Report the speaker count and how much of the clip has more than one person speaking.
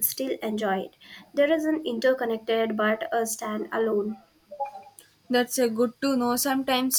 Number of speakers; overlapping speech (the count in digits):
2, no overlap